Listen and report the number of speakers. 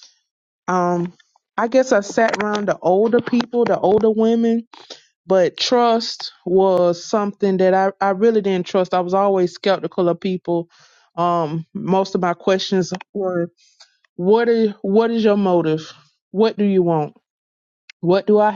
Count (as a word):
one